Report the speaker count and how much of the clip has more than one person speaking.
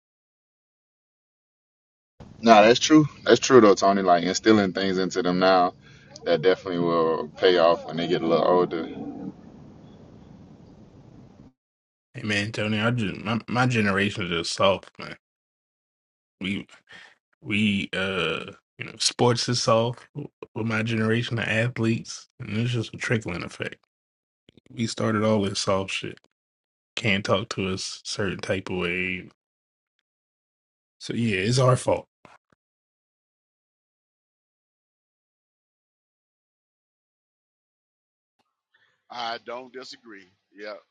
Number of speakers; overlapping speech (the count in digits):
3, no overlap